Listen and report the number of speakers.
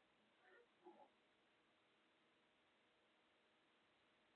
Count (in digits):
0